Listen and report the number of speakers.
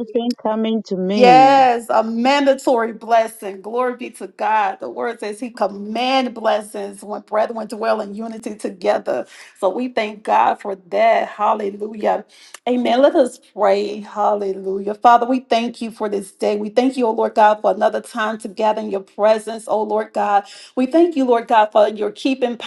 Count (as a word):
two